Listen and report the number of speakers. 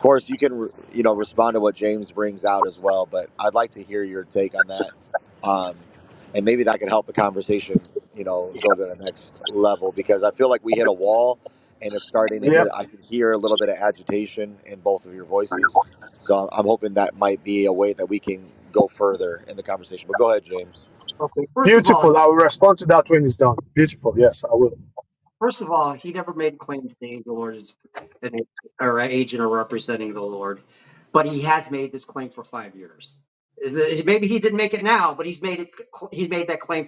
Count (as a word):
three